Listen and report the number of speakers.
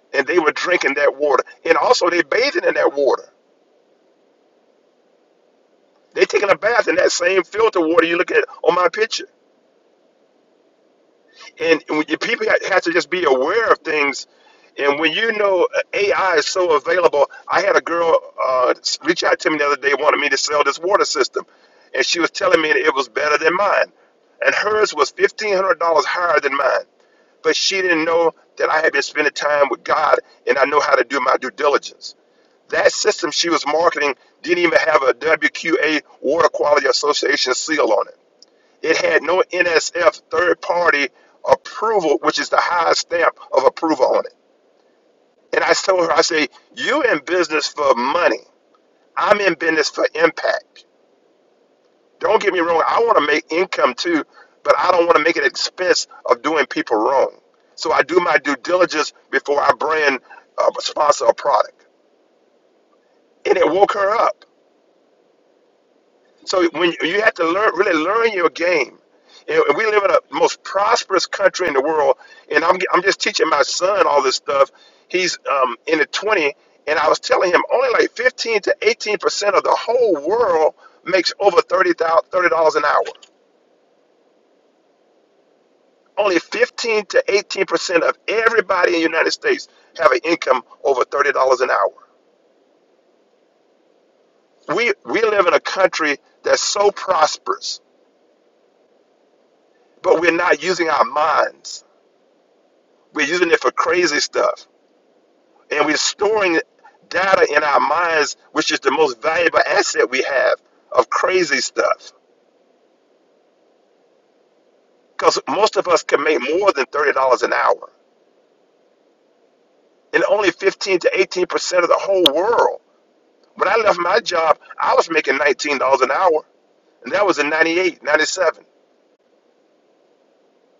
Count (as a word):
one